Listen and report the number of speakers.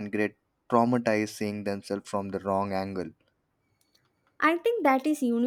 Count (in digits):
2